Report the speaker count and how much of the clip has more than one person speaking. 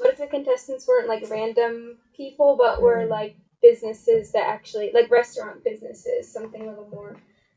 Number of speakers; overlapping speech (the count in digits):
1, no overlap